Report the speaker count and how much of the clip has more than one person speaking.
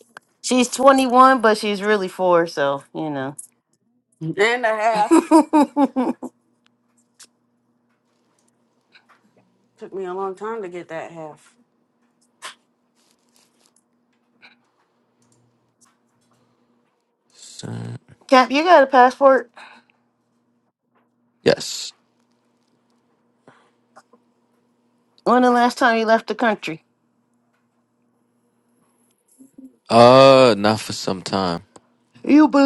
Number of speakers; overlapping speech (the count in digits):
3, no overlap